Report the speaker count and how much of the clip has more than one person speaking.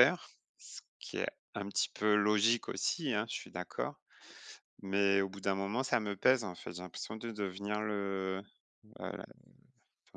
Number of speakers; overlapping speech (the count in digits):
1, no overlap